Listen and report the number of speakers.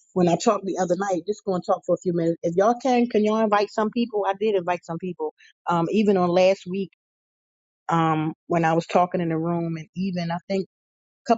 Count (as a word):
one